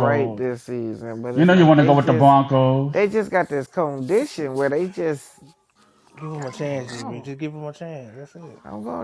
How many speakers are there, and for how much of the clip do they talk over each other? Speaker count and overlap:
3, about 24%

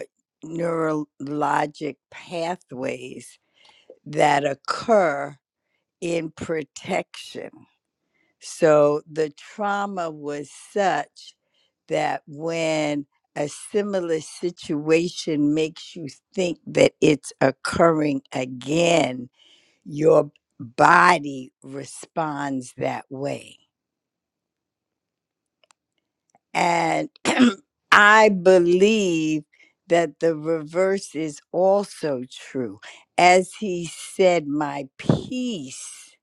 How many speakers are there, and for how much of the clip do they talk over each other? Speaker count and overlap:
1, no overlap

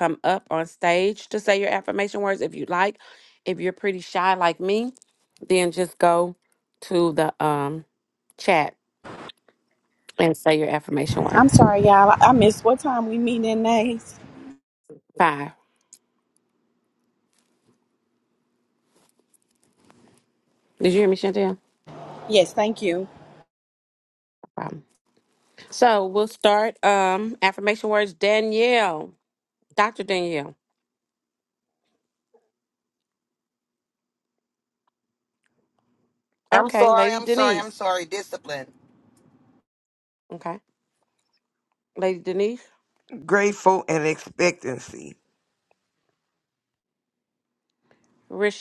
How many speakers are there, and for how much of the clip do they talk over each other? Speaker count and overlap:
4, about 3%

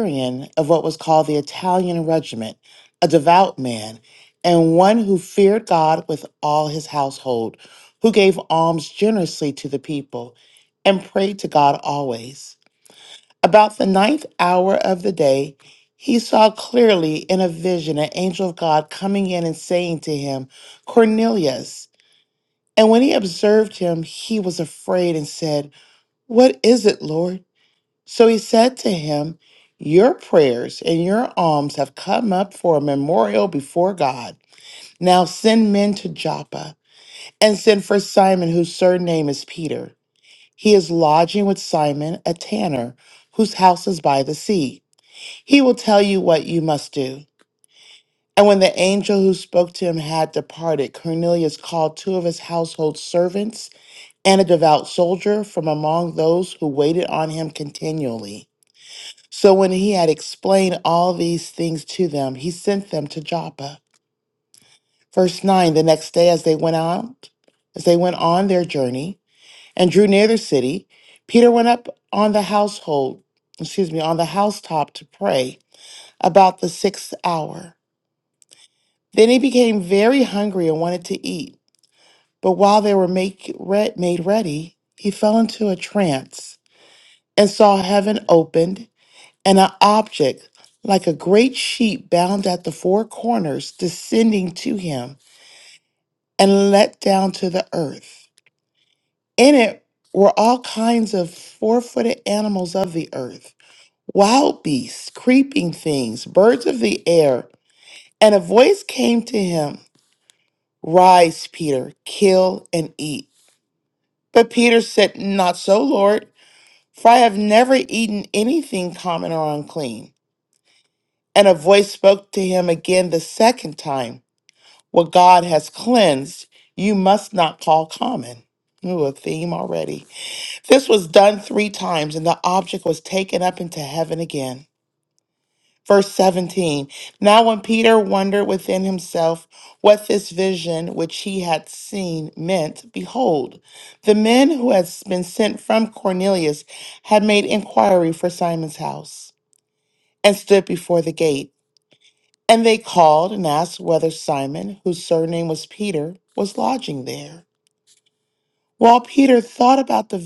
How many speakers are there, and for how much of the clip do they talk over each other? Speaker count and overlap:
1, no overlap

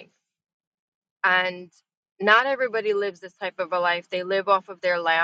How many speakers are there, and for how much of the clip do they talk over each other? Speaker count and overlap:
1, no overlap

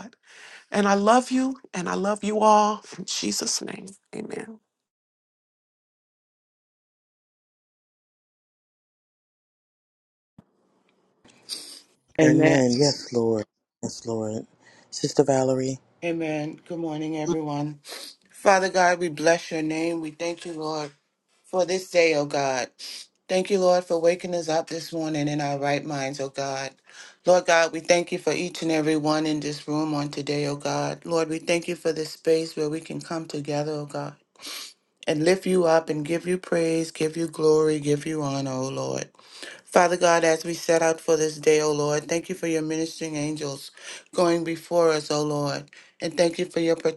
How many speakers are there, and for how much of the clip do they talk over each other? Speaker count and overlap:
3, about 1%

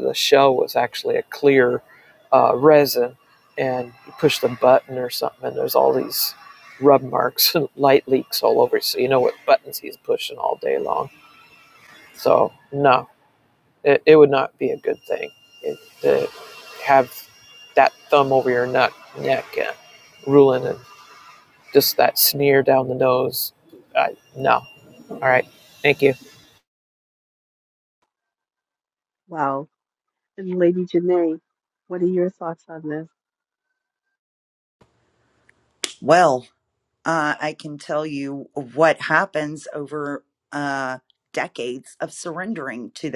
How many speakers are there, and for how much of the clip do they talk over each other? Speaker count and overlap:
3, no overlap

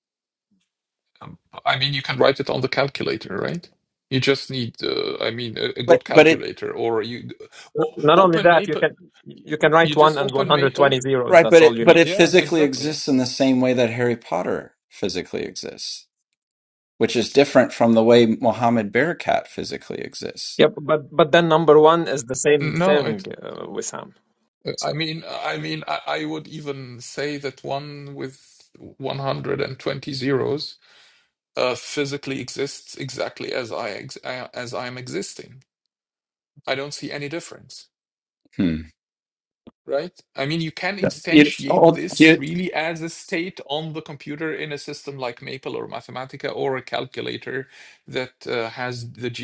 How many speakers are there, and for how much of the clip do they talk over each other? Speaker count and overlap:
3, about 12%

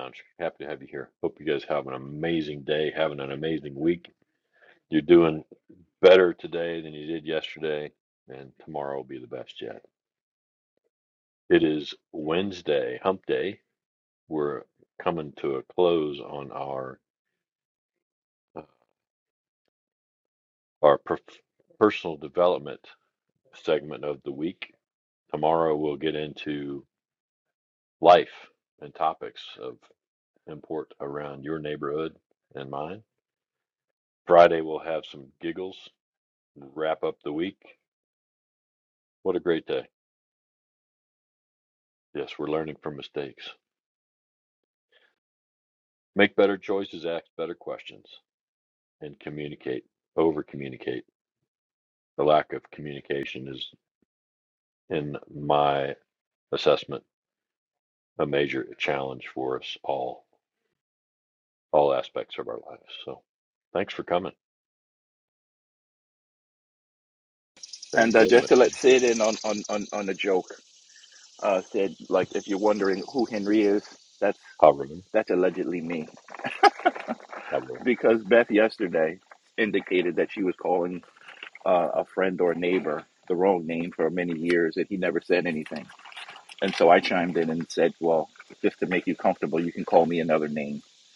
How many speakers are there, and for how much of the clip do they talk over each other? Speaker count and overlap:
2, about 1%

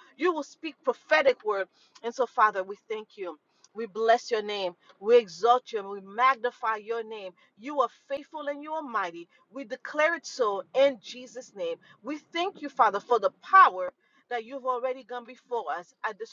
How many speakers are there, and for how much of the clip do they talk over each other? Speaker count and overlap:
1, no overlap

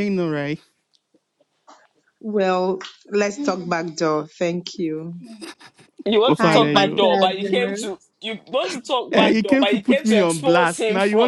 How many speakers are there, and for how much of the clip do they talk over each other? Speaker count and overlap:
3, about 33%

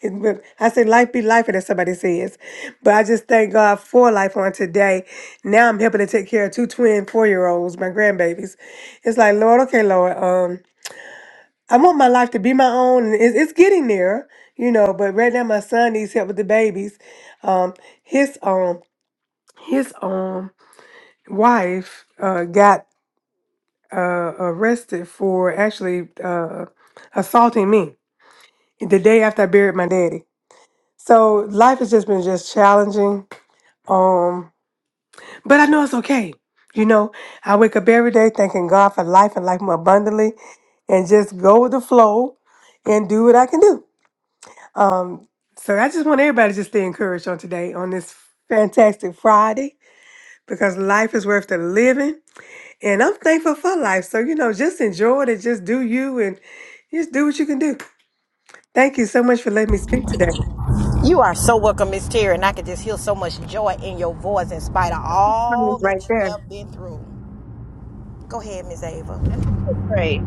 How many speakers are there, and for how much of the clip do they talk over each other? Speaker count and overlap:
3, about 2%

